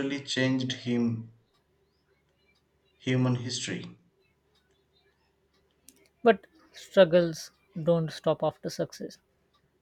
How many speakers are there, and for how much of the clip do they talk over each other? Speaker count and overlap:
2, no overlap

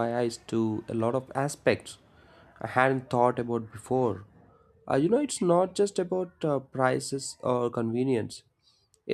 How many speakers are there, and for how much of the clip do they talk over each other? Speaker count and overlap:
1, no overlap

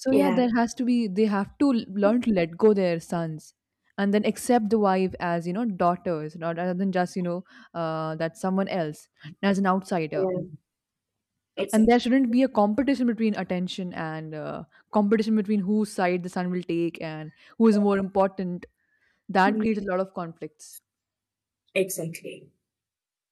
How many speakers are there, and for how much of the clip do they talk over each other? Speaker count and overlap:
2, about 3%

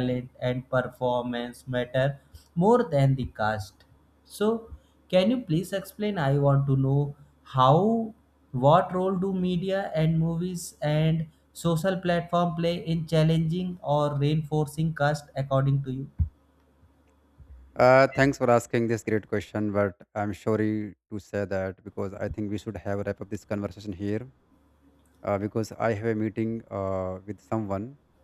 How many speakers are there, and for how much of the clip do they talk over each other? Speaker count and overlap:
2, no overlap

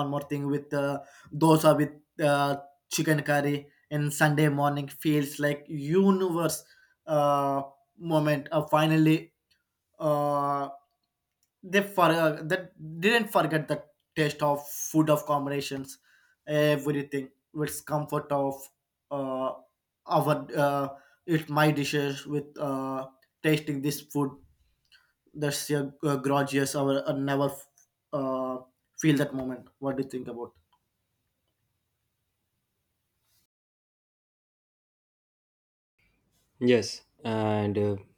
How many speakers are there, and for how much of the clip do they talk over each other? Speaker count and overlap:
2, no overlap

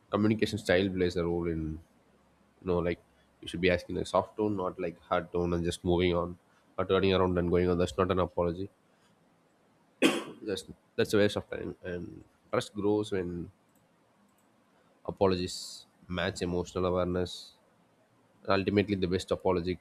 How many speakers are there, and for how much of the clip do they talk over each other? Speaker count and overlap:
1, no overlap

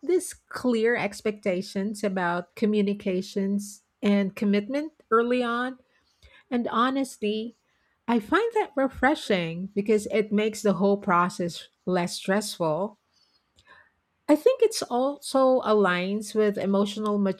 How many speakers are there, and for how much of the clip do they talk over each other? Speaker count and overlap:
1, no overlap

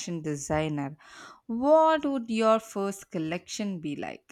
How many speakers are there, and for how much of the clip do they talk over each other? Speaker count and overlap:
1, no overlap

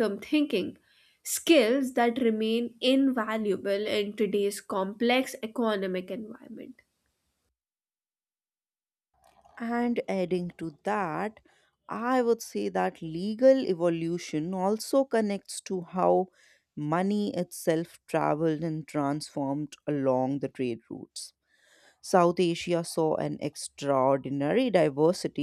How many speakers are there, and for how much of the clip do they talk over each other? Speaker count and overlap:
2, no overlap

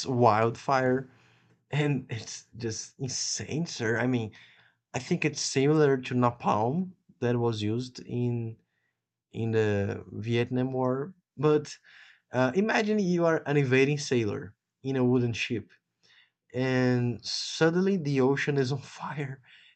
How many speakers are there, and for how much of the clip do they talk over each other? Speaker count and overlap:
1, no overlap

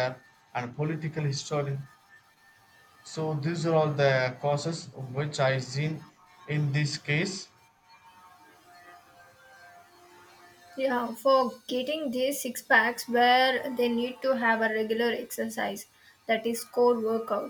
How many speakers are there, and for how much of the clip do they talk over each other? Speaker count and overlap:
2, no overlap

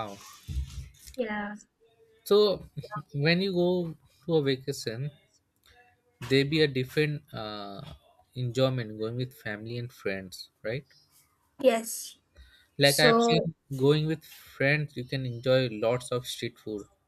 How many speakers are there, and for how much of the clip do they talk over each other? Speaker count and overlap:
2, about 4%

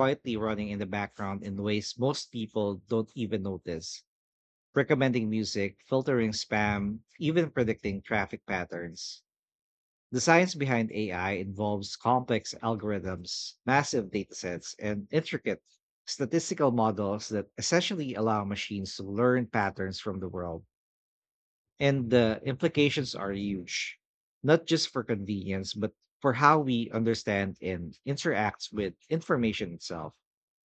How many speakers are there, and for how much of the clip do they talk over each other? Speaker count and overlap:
1, no overlap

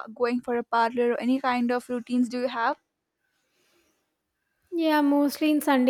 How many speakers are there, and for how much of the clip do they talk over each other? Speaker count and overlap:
2, no overlap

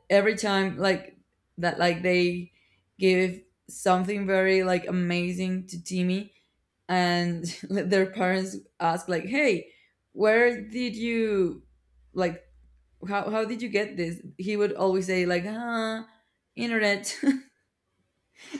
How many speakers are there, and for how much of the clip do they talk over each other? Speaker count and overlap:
1, no overlap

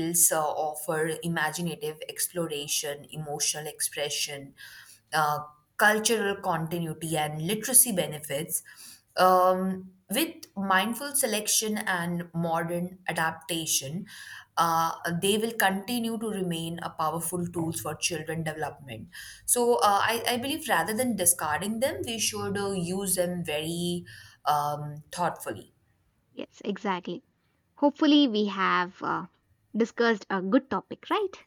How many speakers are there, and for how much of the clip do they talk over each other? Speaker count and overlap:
2, no overlap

